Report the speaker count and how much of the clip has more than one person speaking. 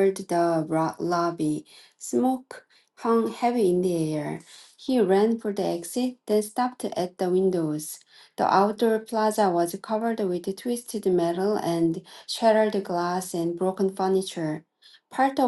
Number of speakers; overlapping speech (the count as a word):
one, no overlap